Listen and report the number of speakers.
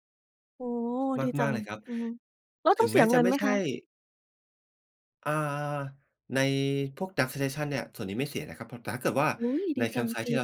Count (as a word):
two